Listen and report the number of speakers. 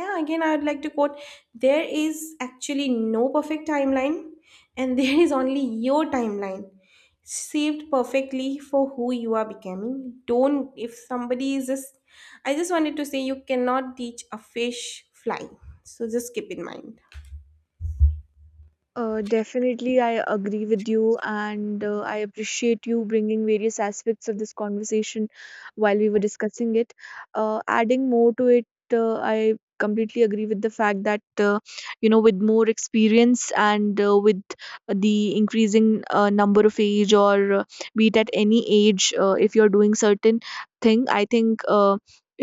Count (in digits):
2